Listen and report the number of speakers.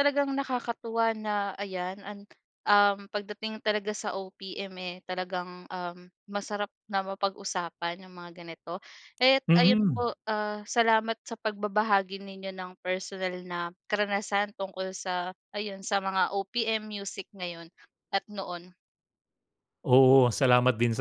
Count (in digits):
2